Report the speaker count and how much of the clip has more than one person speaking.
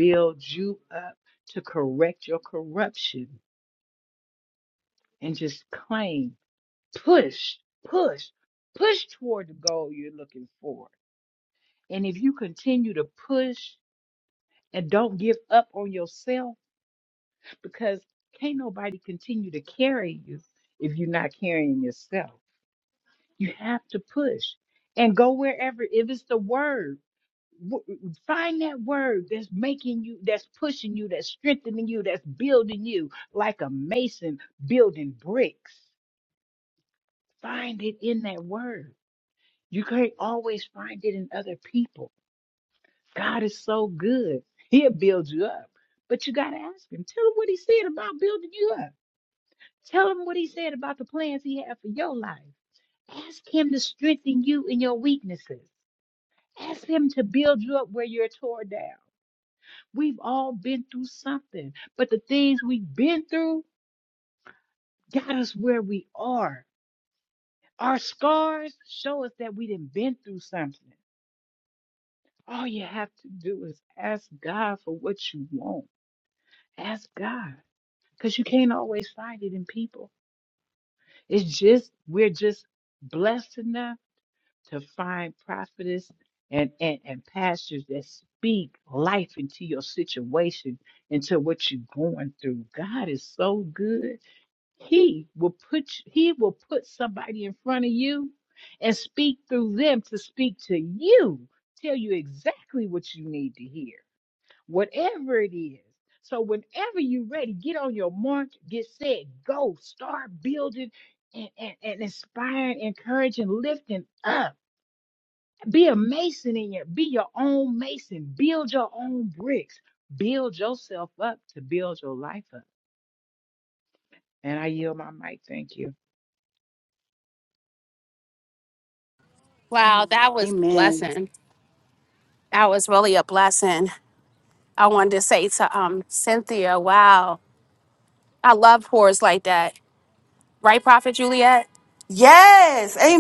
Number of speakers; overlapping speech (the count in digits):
3, under 1%